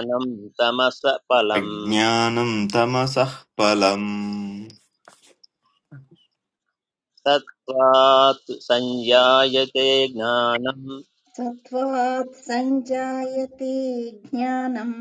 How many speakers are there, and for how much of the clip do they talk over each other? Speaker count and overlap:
3, about 1%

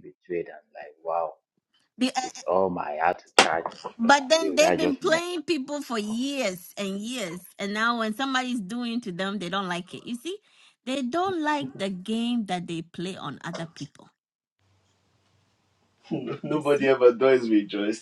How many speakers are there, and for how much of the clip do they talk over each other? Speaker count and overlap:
3, about 8%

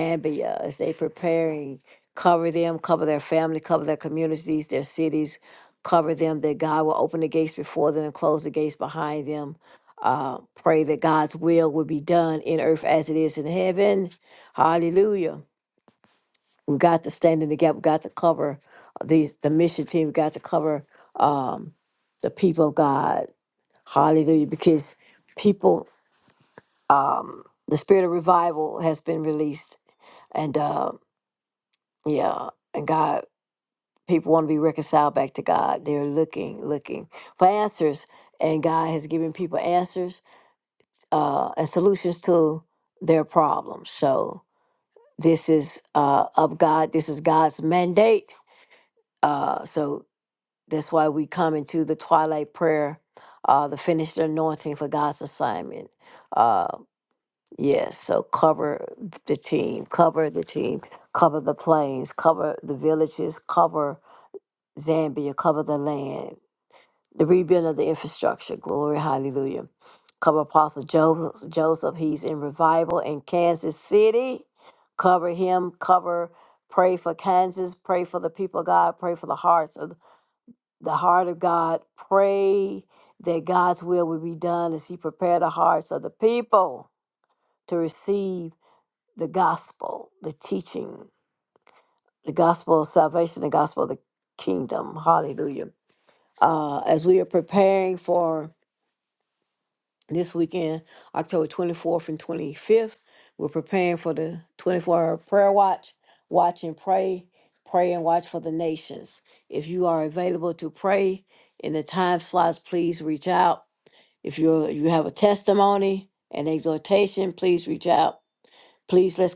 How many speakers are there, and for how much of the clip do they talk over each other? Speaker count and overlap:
1, no overlap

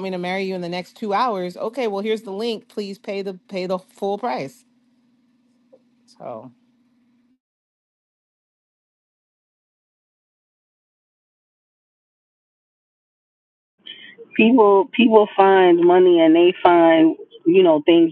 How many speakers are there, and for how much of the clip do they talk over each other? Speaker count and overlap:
2, no overlap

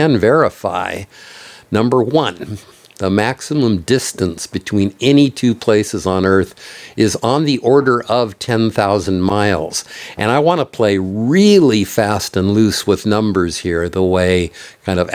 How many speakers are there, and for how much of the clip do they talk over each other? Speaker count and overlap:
1, no overlap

